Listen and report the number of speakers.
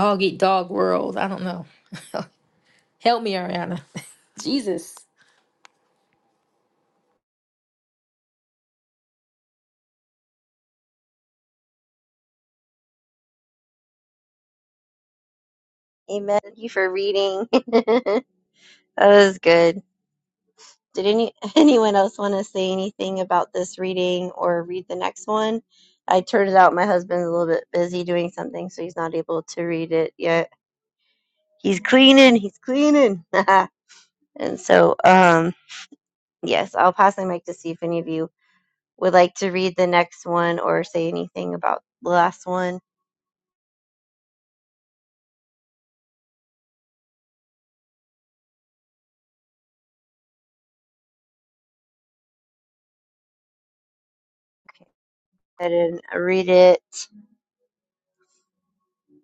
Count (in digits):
2